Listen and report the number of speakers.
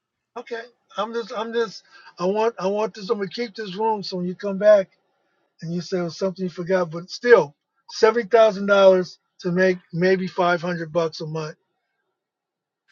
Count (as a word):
one